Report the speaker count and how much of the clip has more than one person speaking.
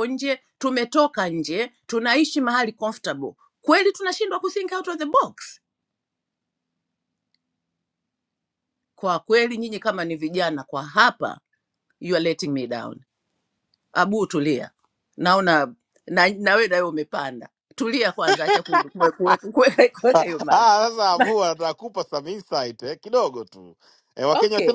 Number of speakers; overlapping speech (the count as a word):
two, about 3%